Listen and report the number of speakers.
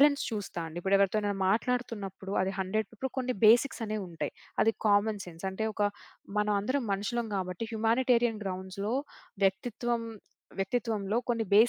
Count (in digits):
1